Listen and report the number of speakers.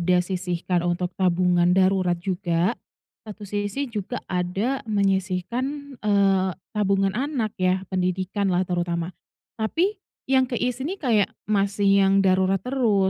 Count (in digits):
1